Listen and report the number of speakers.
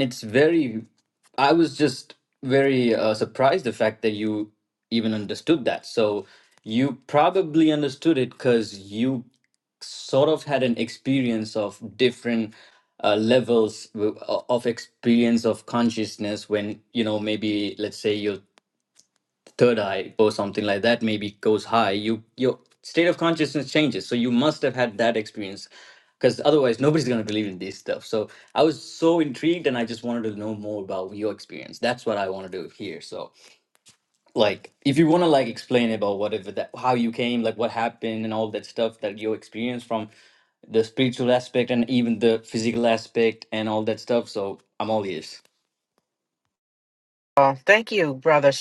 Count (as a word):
two